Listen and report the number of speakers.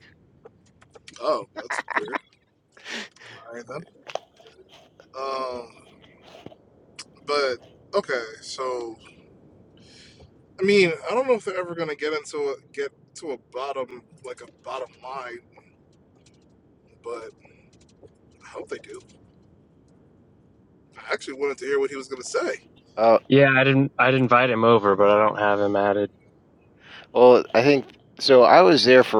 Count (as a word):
three